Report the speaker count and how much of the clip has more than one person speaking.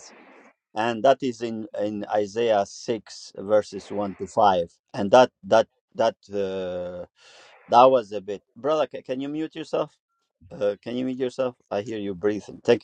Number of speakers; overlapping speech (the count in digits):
1, no overlap